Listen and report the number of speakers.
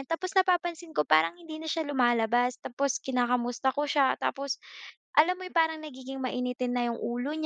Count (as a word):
one